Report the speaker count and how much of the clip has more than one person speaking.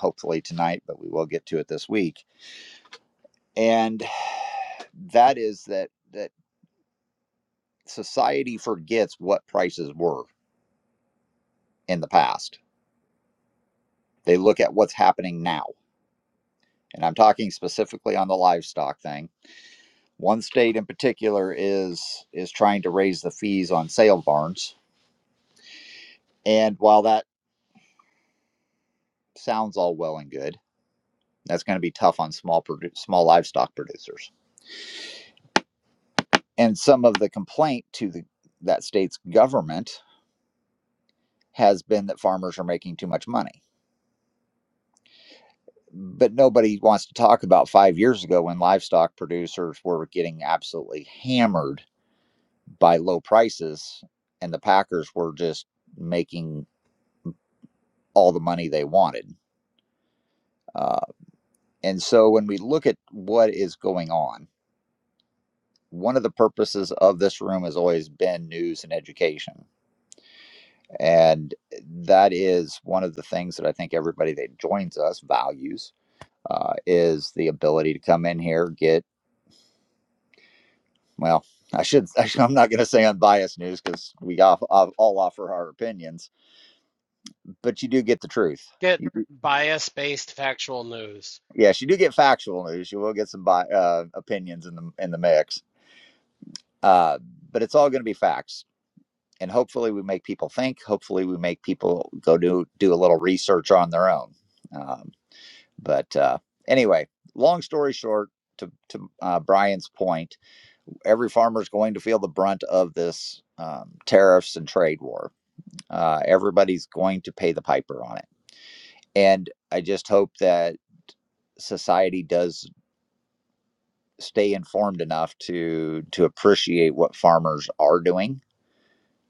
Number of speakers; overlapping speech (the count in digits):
2, no overlap